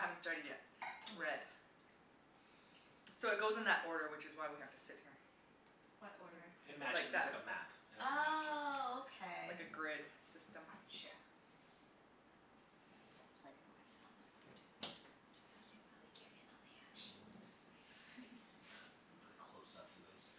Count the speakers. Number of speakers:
three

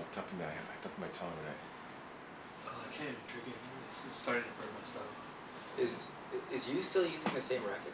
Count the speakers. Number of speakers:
three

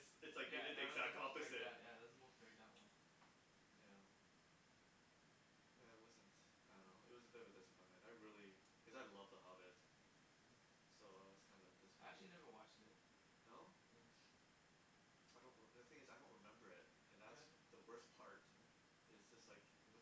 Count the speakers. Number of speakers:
two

